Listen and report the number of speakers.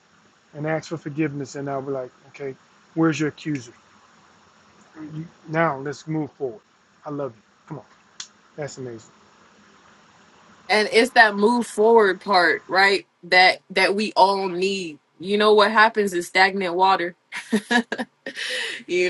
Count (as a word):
two